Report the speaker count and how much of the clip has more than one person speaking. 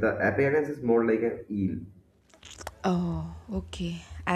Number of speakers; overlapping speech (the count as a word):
two, no overlap